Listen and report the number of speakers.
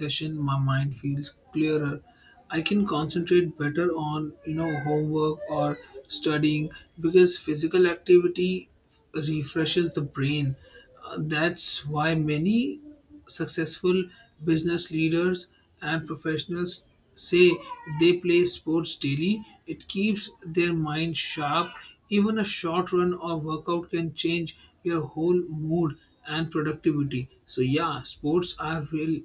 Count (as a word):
one